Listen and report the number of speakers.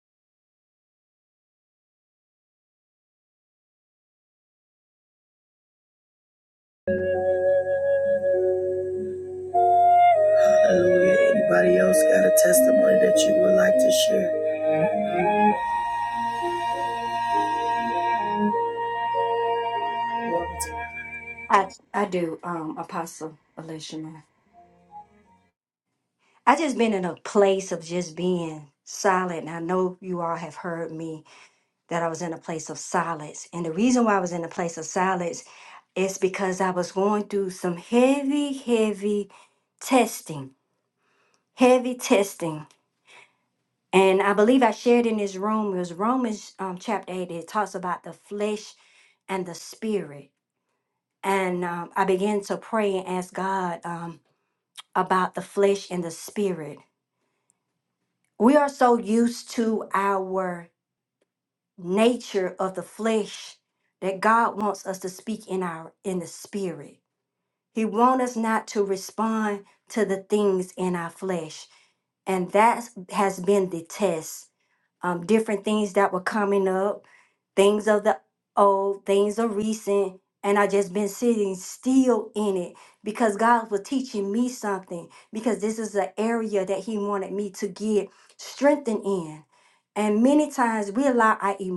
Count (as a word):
two